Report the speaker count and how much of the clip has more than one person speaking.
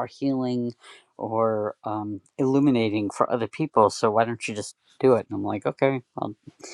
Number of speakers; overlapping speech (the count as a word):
one, no overlap